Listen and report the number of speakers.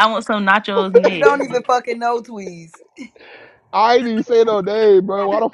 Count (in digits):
3